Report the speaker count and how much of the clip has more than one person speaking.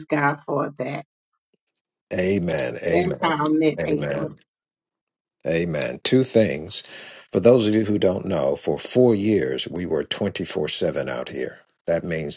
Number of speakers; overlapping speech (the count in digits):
2, about 11%